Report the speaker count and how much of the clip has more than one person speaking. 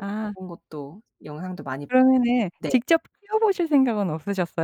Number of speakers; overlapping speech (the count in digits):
2, about 9%